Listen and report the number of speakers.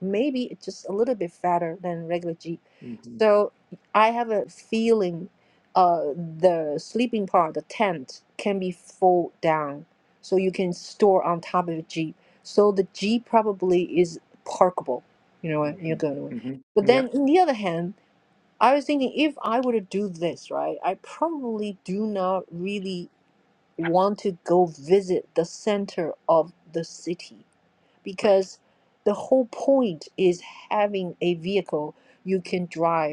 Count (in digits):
2